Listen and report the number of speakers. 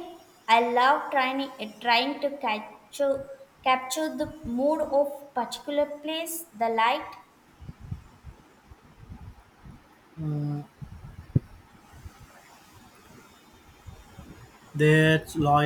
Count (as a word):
two